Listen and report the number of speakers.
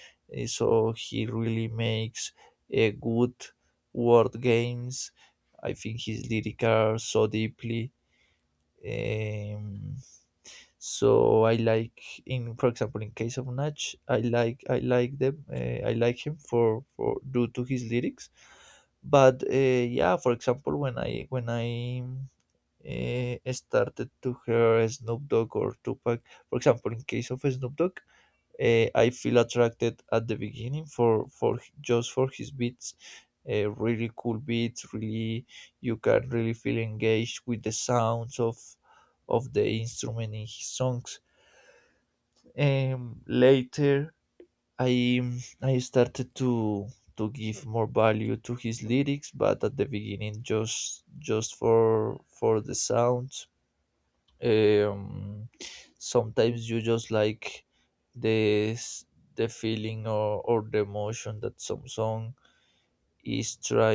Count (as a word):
one